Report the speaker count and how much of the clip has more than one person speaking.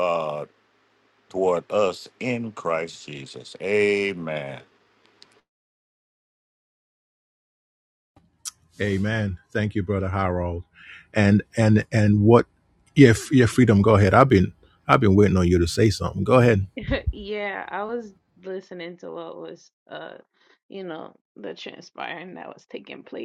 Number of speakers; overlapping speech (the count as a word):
three, no overlap